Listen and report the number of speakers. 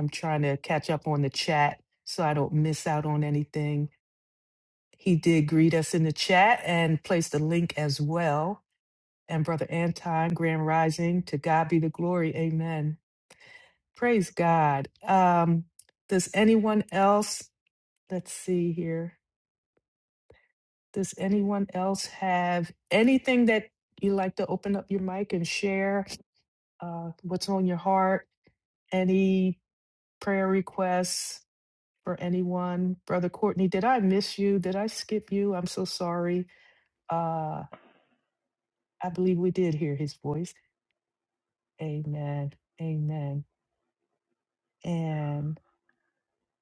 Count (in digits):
1